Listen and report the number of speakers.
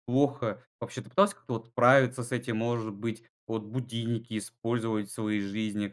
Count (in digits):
1